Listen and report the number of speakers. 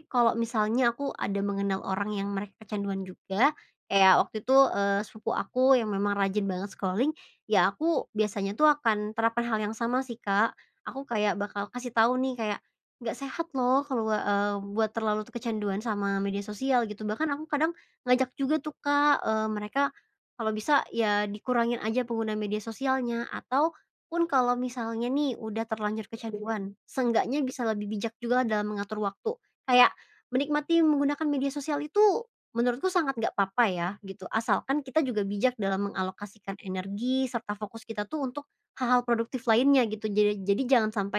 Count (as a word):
one